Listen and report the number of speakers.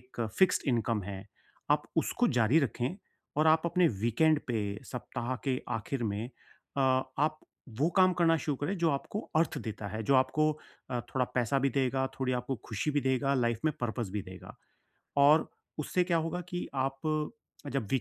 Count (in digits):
1